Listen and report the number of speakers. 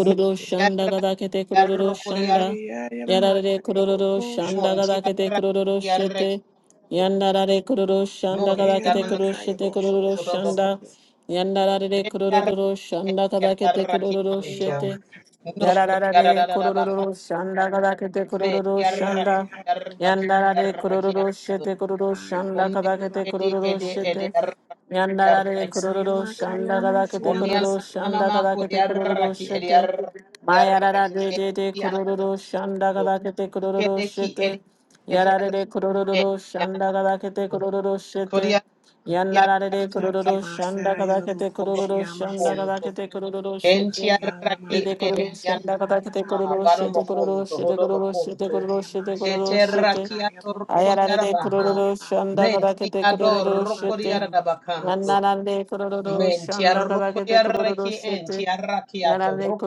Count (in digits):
3